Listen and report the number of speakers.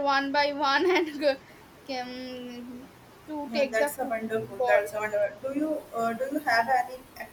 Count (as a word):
two